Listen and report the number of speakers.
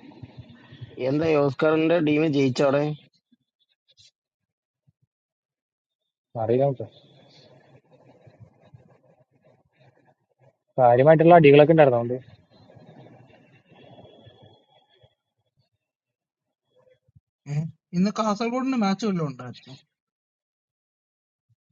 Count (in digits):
3